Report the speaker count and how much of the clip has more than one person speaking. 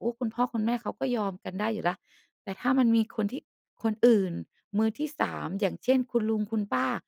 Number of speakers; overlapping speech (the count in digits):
1, no overlap